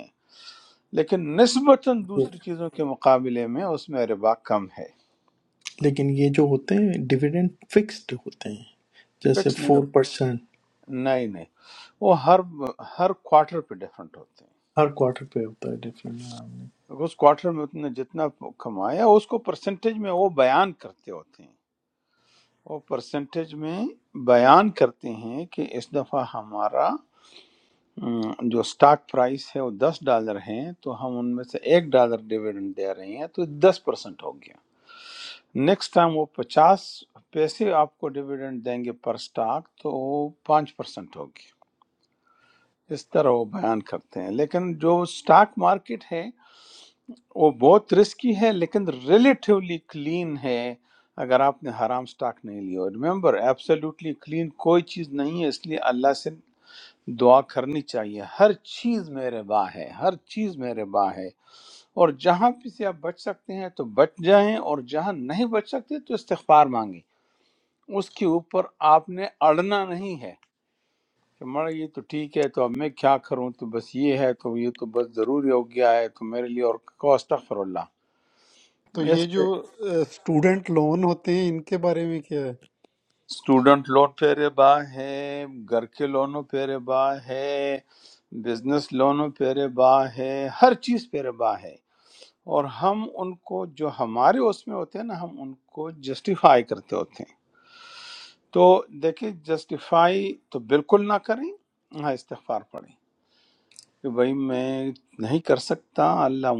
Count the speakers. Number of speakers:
three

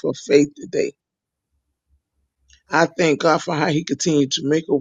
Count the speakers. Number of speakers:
one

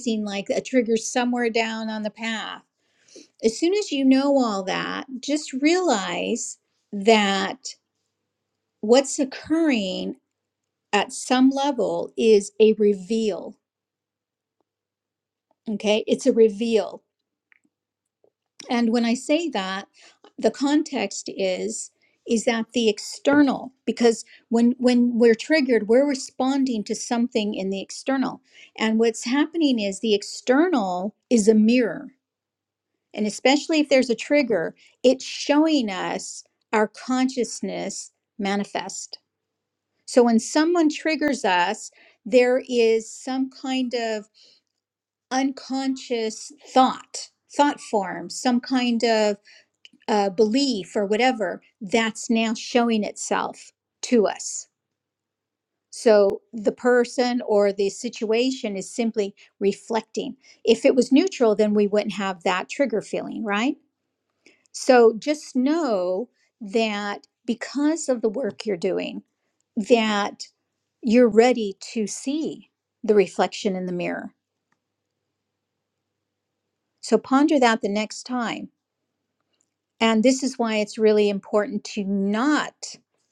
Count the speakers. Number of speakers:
one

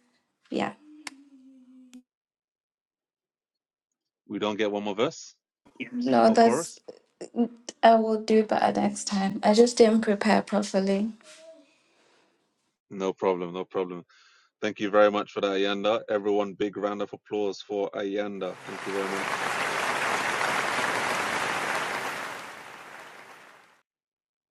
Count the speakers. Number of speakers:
two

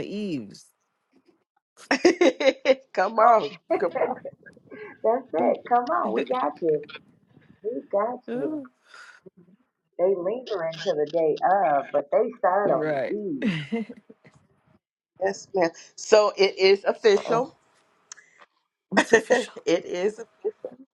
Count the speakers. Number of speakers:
three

